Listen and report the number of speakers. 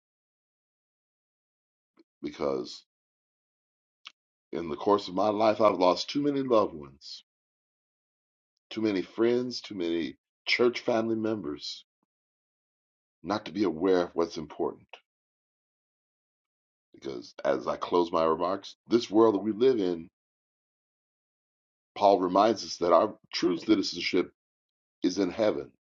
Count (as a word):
one